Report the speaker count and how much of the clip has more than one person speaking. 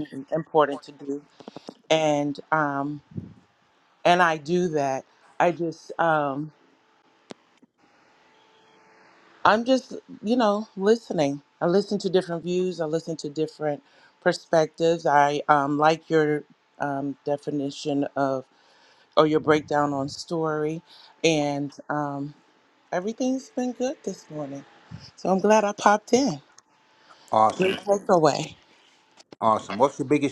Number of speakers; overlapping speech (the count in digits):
2, about 1%